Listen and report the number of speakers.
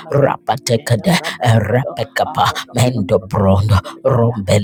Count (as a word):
two